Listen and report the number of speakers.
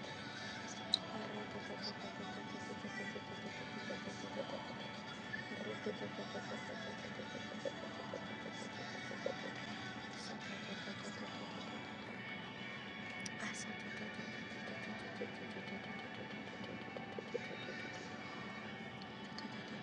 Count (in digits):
0